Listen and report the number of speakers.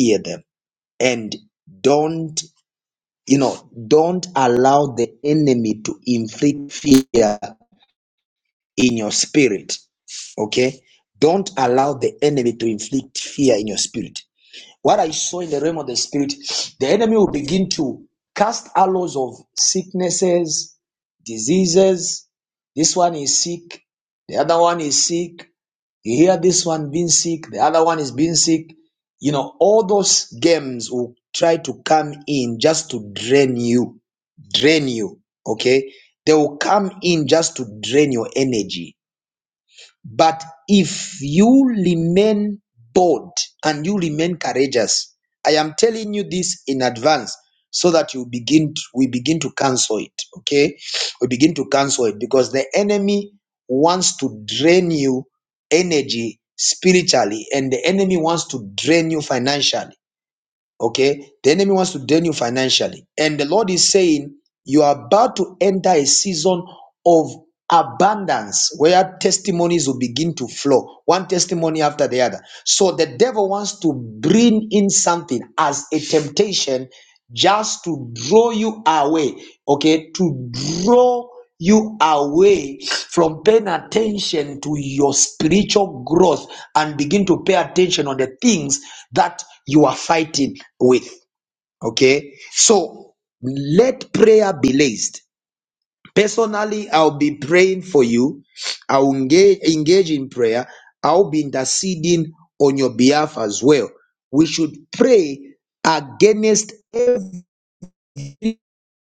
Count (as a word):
one